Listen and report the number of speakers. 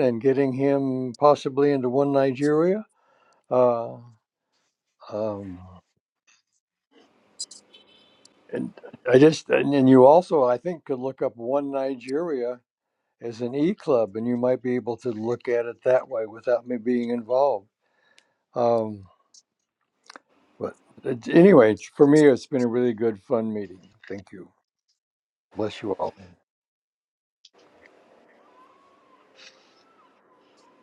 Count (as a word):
one